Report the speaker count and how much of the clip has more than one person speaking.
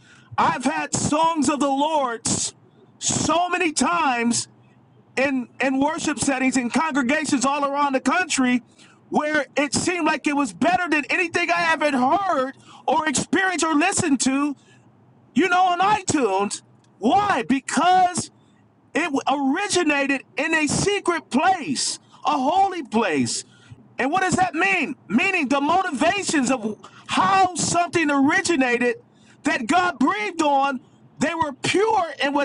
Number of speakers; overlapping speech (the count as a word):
one, no overlap